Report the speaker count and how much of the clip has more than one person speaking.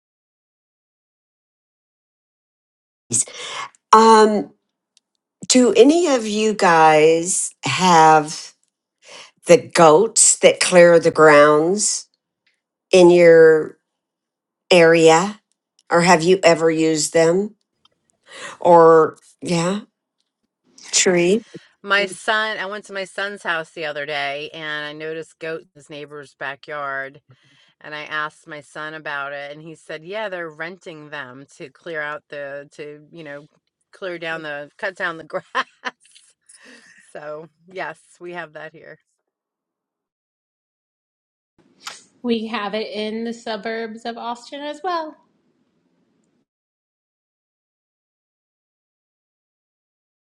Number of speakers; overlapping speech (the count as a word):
three, no overlap